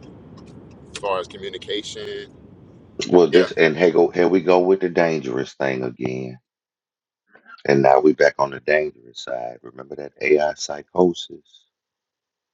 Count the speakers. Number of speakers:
2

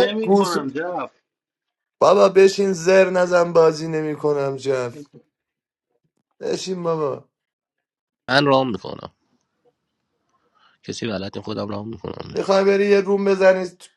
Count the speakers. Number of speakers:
3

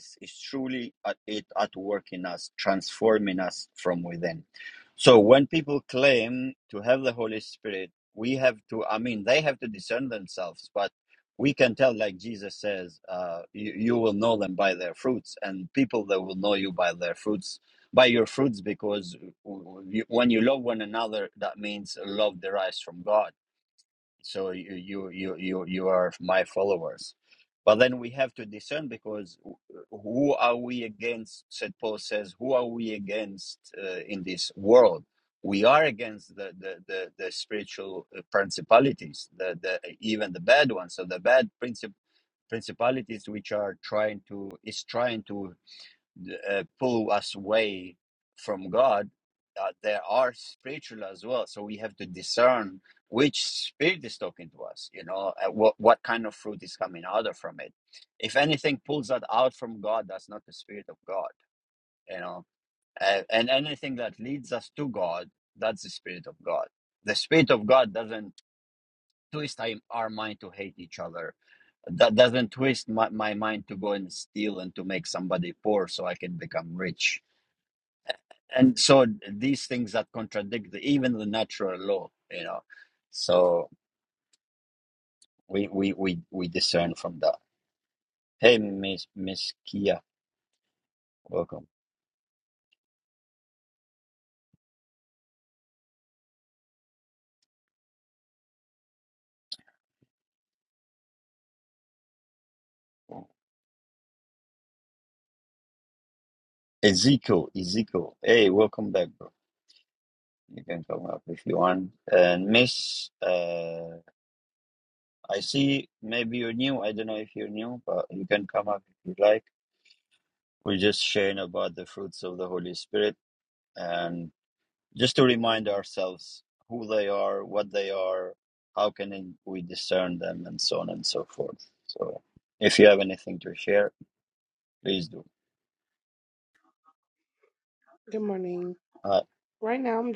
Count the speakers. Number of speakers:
2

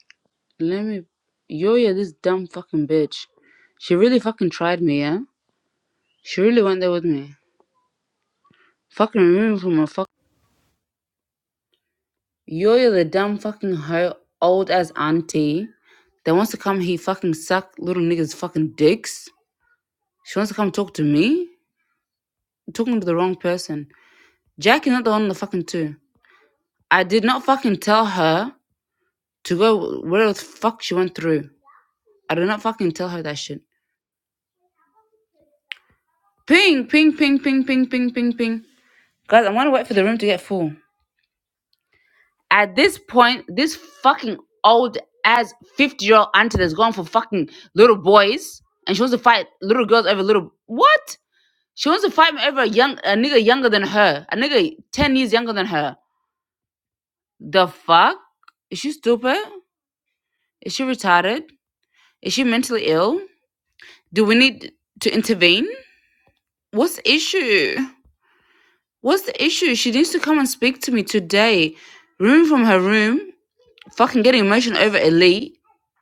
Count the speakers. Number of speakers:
1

